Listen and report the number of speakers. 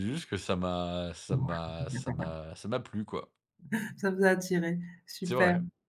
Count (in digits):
2